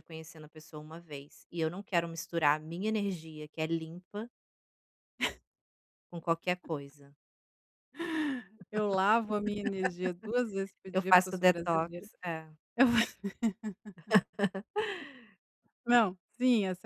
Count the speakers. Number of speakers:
2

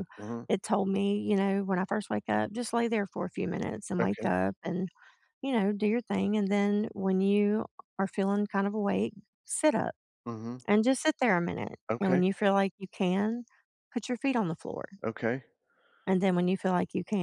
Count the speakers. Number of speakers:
2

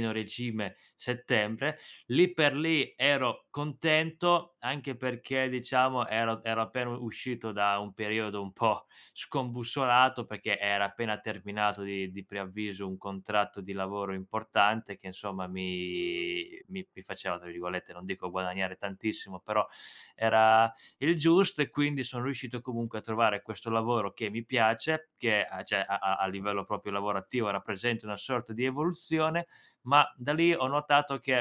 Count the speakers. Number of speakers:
1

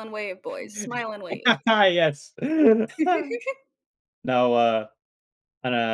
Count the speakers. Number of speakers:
2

